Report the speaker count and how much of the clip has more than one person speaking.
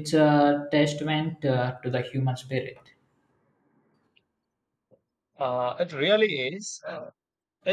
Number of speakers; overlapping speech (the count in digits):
2, no overlap